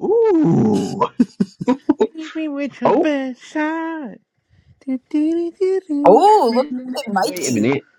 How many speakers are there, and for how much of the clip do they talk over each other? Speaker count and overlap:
3, about 11%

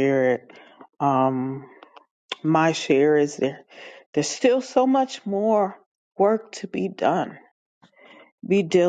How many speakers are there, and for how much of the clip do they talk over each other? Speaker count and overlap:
1, no overlap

